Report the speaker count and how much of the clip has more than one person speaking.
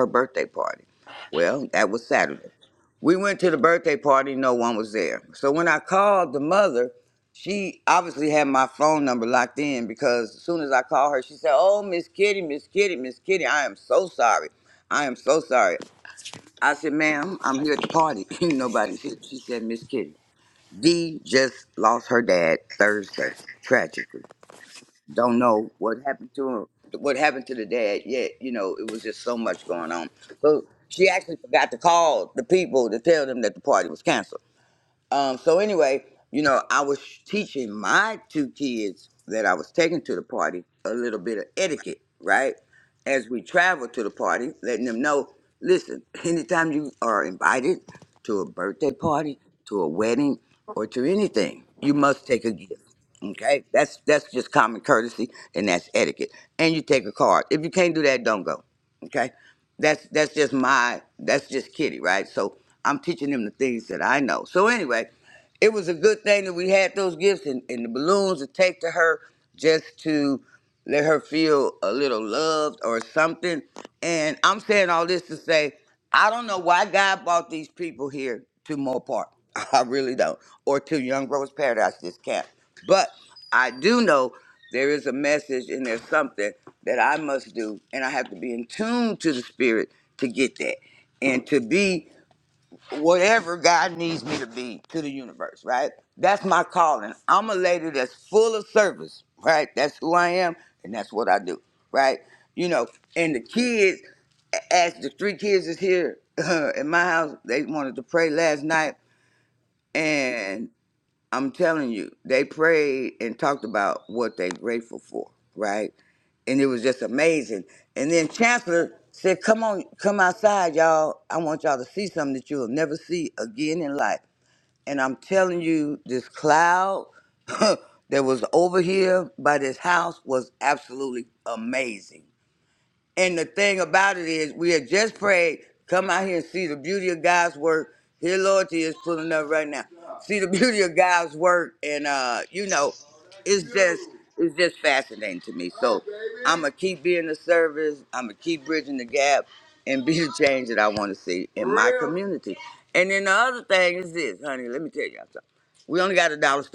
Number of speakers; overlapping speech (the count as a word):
one, no overlap